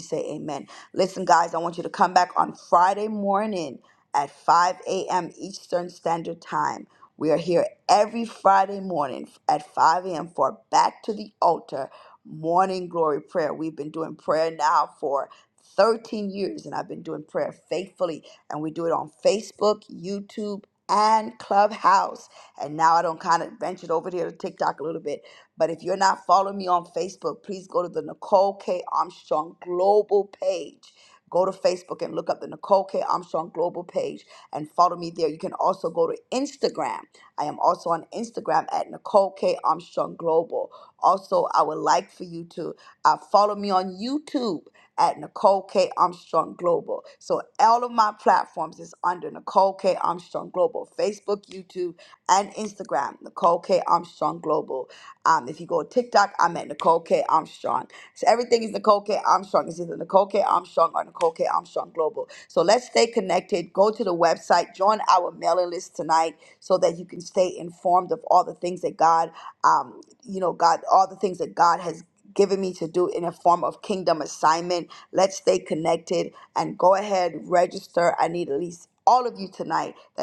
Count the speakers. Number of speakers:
1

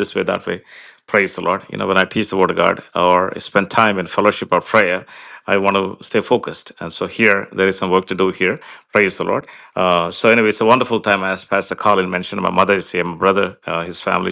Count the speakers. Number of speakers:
1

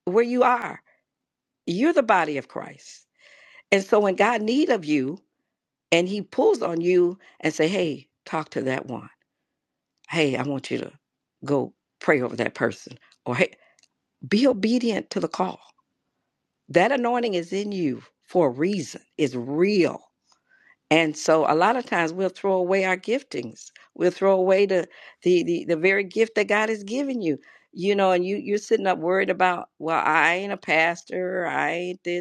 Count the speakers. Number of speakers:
1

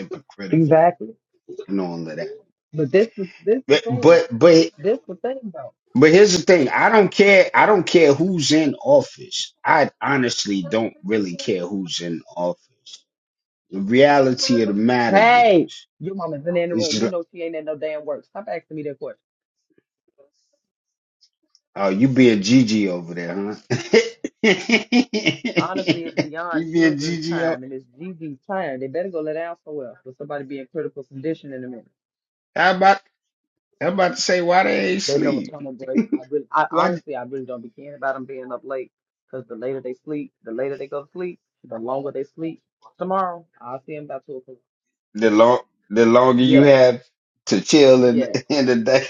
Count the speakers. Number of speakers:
2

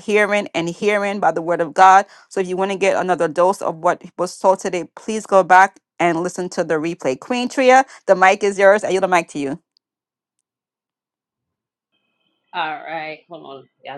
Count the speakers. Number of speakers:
2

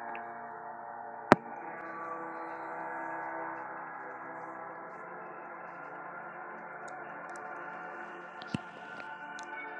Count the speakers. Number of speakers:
0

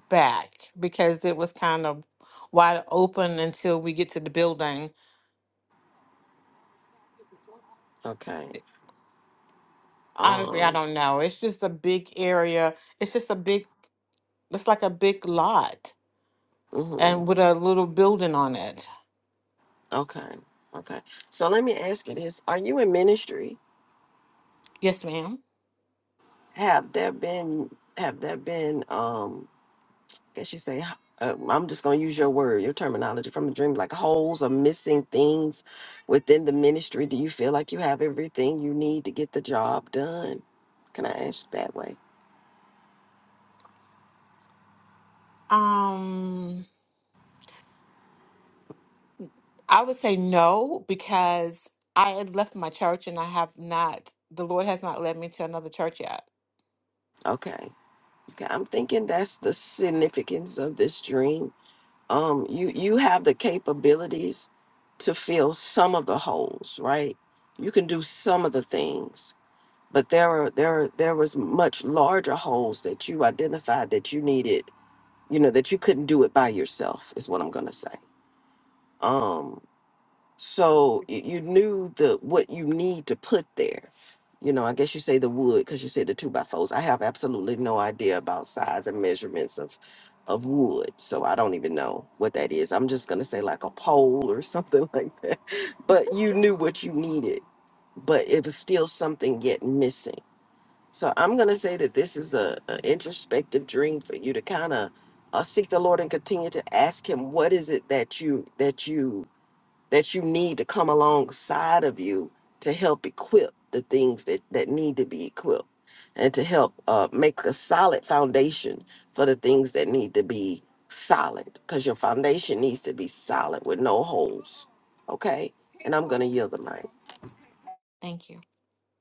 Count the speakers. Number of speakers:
2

